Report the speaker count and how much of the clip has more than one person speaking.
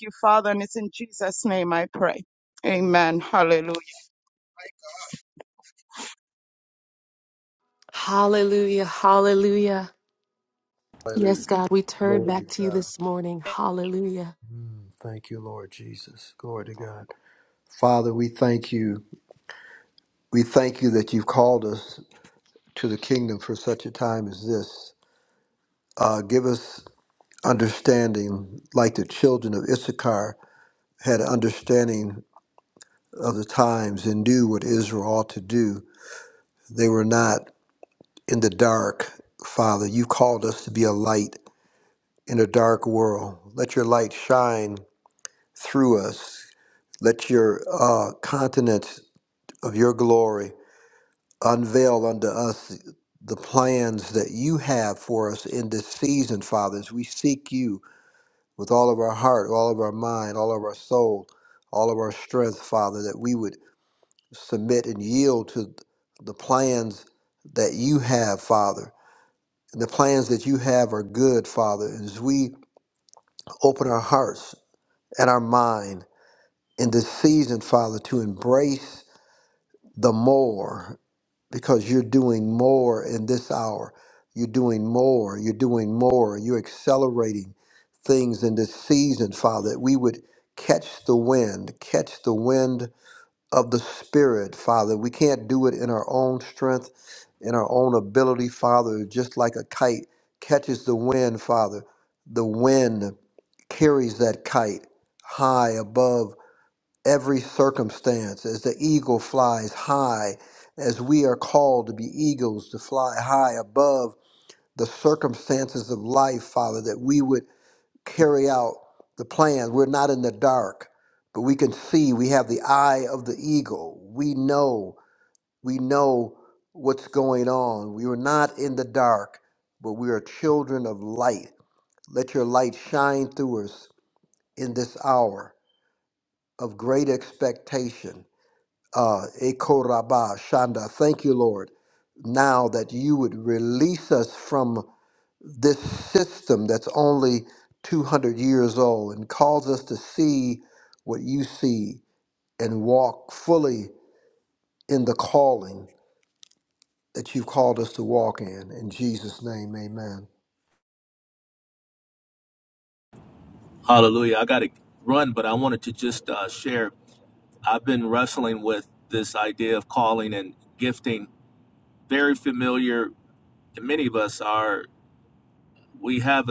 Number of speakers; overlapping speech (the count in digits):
4, about 1%